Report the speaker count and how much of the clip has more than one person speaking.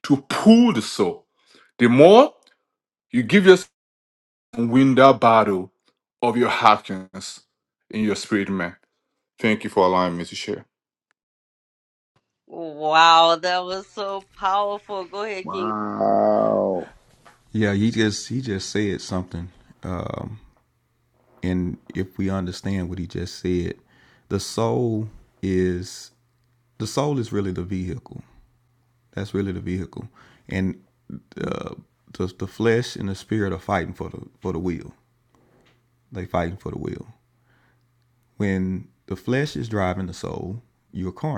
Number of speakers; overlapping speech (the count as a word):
four, about 1%